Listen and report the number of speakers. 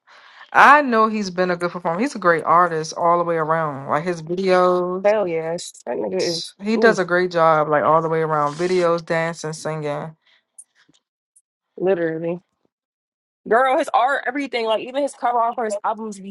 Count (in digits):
2